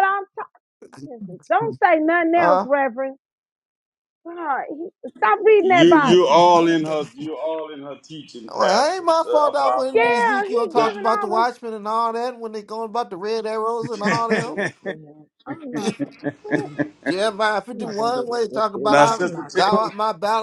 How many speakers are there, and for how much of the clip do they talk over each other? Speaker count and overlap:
three, about 37%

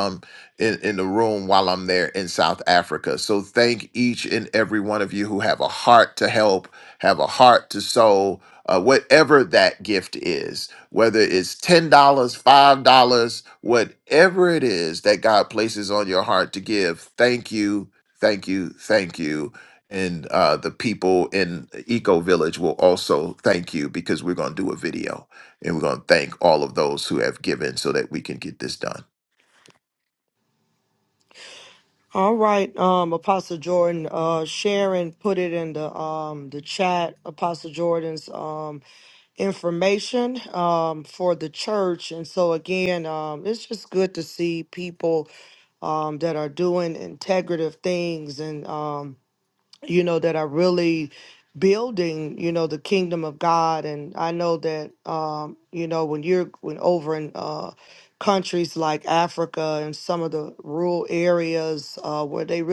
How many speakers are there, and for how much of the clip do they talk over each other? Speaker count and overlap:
two, no overlap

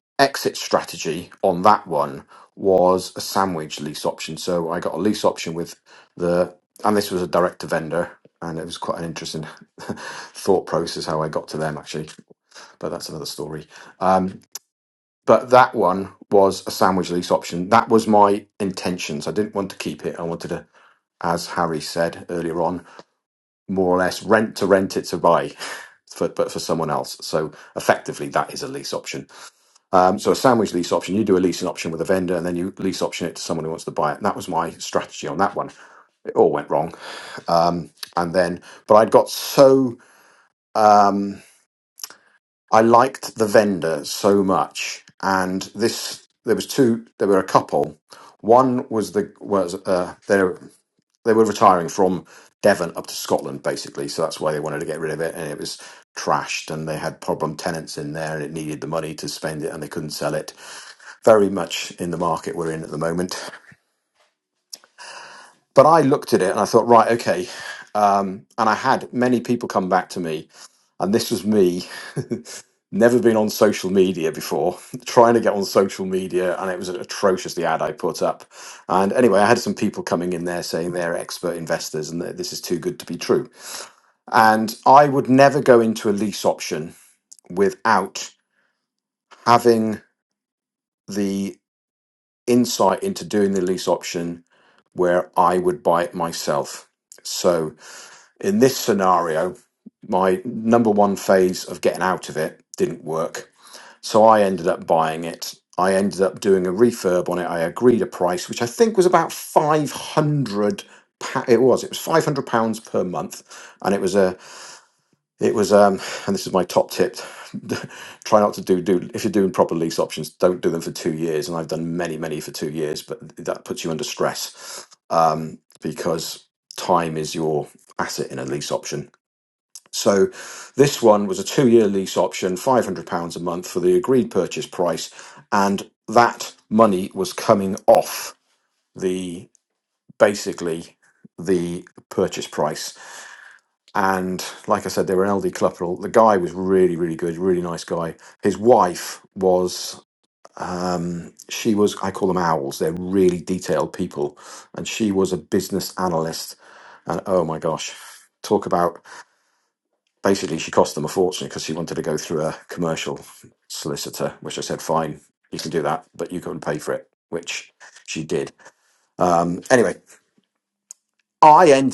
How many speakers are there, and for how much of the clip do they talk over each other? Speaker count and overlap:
one, no overlap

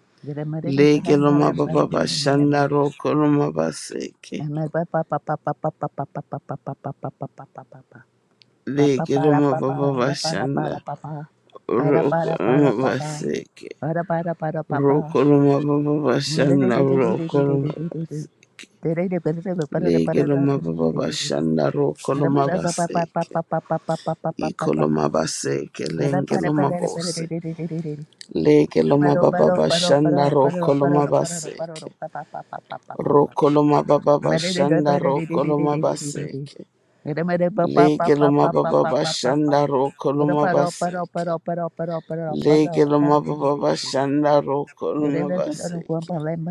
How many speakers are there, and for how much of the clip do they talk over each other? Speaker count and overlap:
two, about 49%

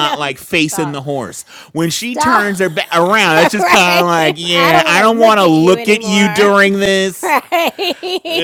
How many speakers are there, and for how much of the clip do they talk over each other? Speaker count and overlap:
two, about 47%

